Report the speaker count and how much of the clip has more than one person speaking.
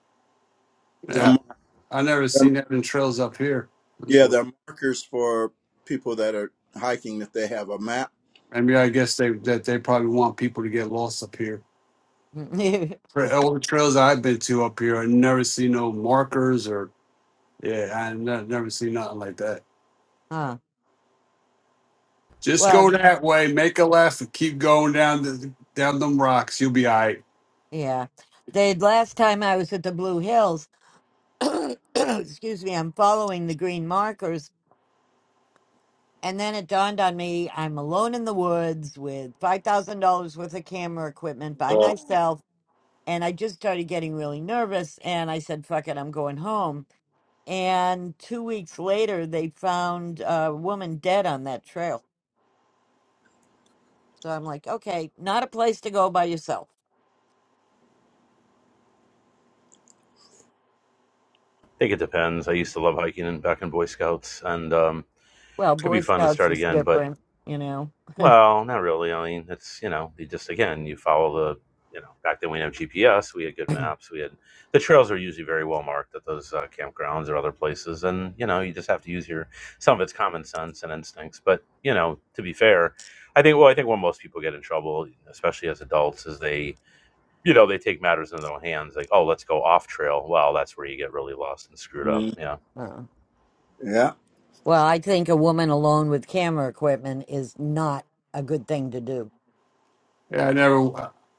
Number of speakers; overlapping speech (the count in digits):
4, about 3%